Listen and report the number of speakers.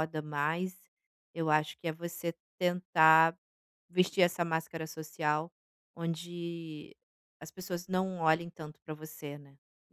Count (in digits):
1